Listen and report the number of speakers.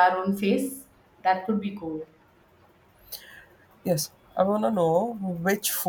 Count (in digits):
2